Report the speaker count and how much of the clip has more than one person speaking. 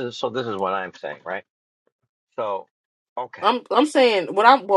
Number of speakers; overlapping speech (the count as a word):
two, about 2%